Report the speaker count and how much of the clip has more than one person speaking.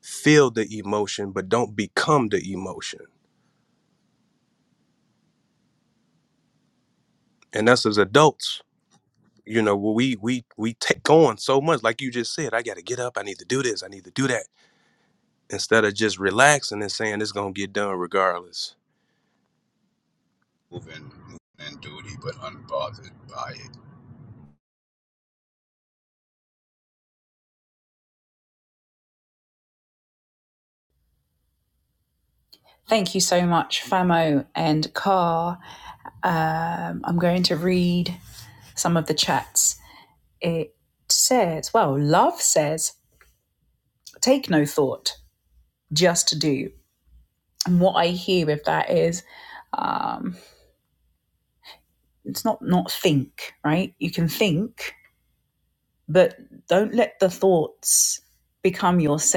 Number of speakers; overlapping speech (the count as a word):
three, no overlap